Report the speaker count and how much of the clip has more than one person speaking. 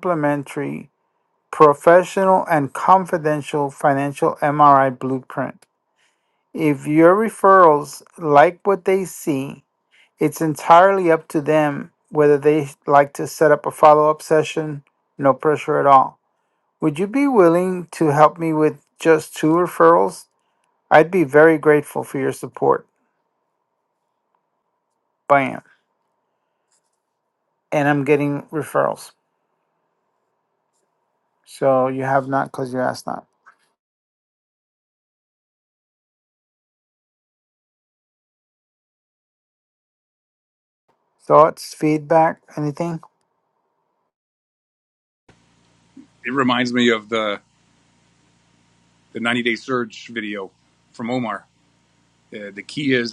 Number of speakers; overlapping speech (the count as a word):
two, no overlap